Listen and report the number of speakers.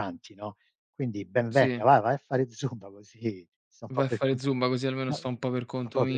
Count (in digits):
2